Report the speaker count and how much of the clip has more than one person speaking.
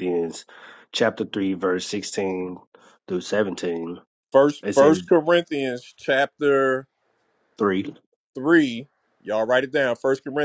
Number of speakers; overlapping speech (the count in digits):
2, about 4%